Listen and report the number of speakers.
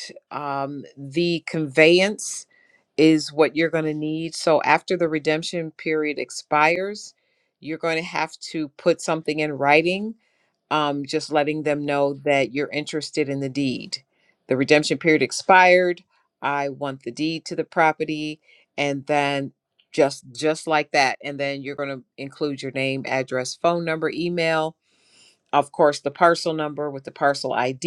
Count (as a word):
one